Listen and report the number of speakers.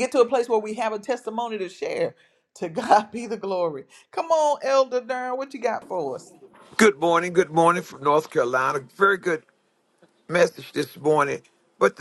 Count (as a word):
two